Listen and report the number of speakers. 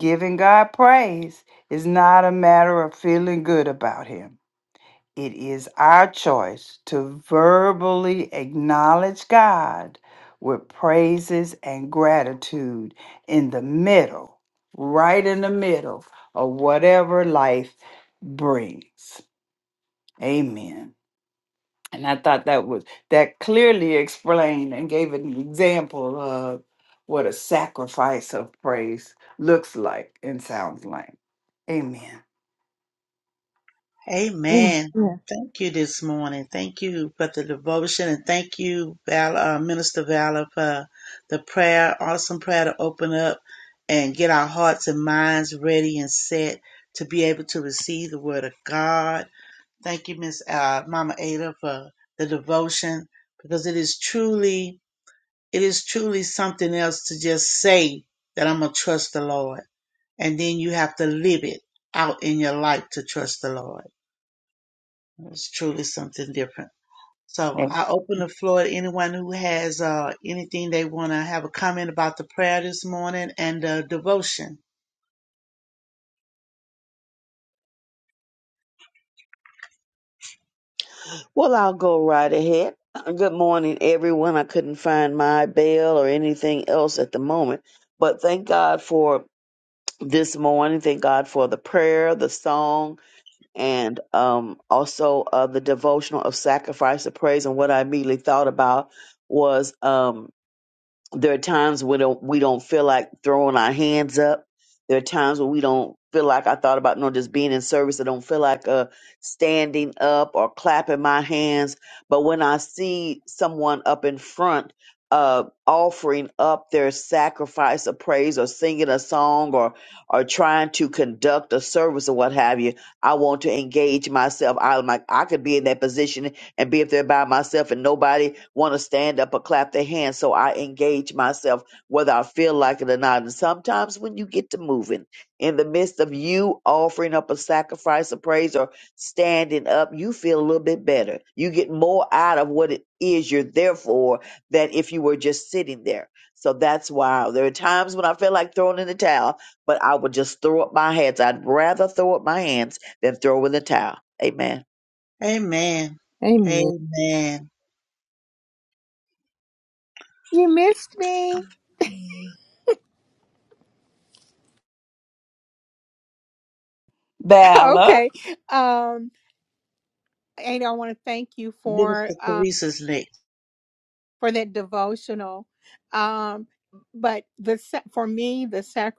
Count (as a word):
four